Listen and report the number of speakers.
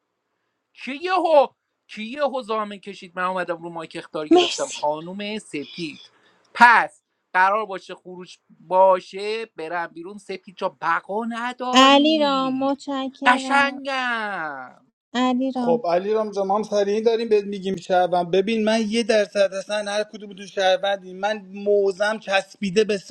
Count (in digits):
3